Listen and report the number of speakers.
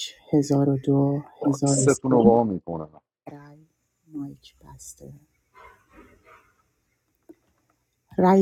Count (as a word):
two